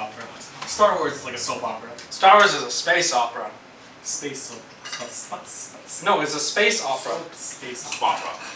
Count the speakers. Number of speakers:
3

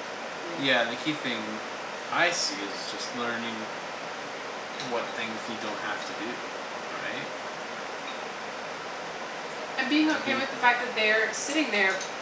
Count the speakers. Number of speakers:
2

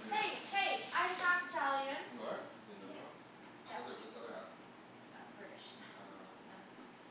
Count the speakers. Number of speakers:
2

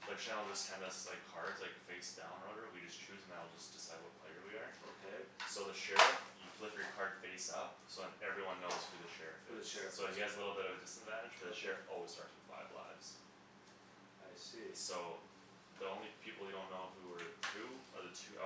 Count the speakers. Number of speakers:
2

